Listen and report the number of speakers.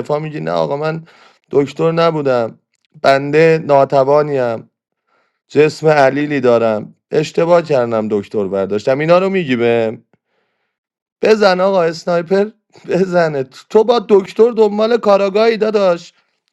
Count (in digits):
1